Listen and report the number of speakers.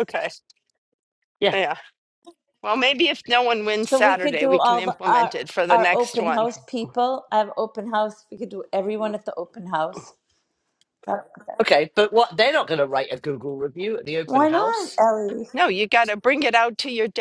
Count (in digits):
3